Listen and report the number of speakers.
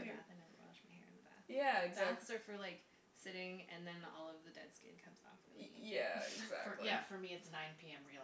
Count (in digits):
3